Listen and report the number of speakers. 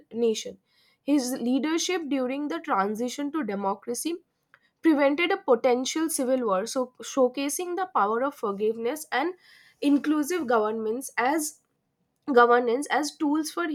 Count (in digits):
1